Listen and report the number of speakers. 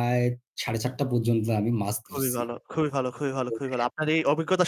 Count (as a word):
two